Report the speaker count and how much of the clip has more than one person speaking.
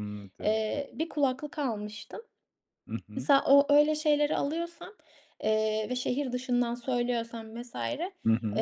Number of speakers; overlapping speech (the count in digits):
2, about 7%